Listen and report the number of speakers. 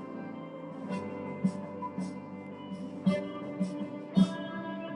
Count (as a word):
zero